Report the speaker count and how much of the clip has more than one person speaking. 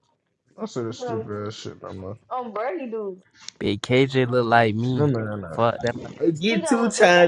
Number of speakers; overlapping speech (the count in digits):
4, about 18%